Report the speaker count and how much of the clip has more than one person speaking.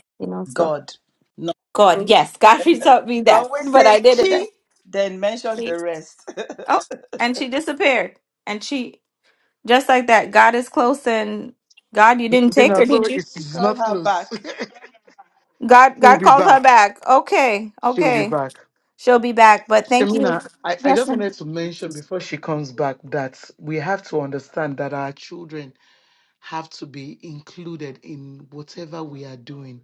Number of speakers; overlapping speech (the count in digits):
3, about 16%